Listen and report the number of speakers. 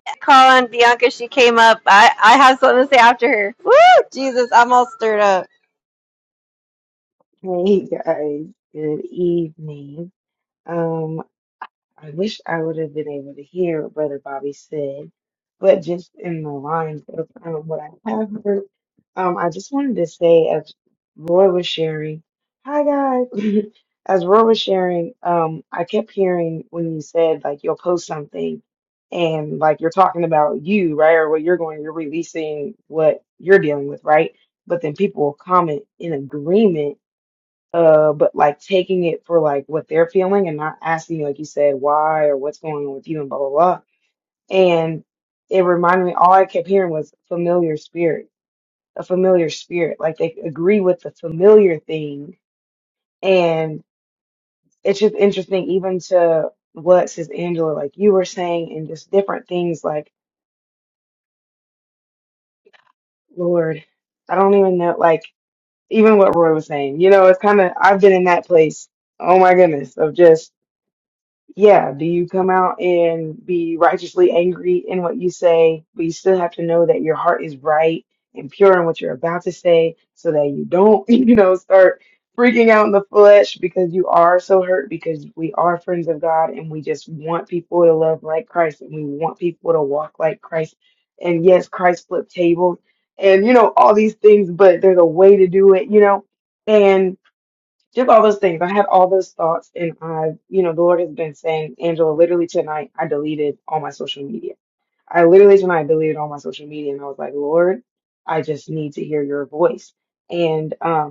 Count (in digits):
2